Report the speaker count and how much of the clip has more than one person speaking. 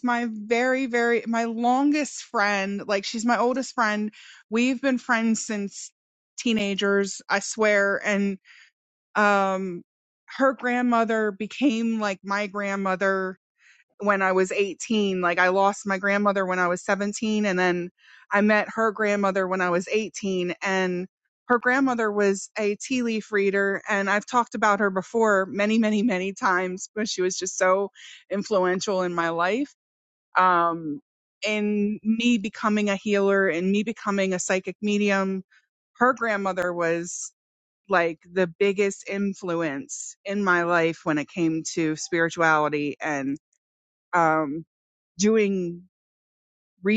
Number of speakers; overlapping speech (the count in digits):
1, no overlap